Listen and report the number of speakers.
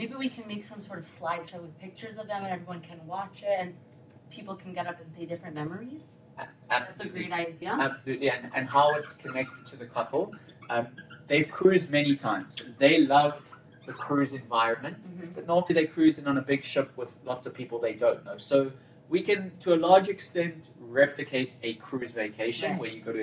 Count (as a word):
two